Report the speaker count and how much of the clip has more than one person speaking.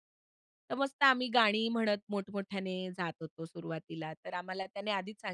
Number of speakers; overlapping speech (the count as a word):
one, no overlap